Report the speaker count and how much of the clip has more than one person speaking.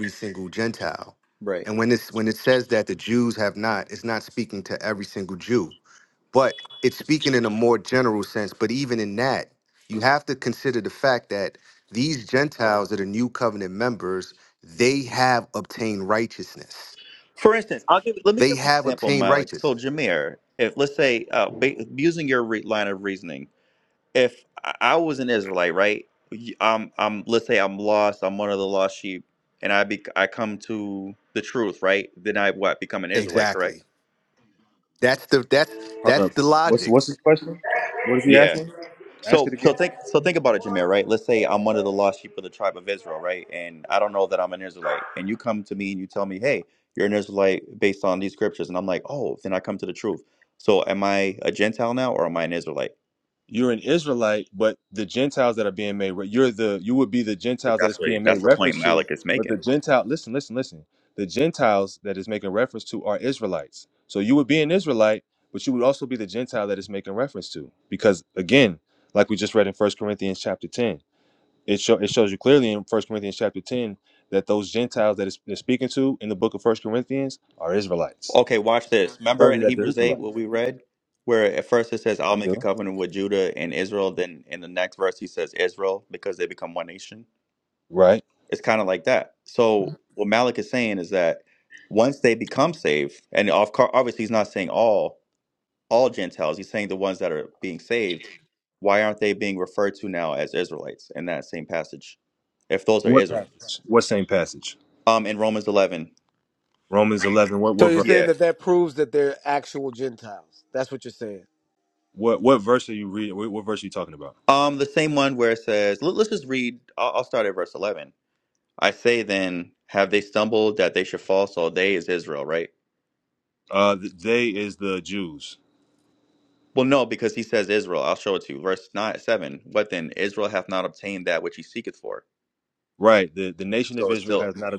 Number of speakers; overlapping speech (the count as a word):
four, about 6%